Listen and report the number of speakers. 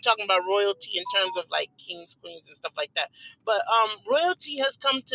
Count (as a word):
one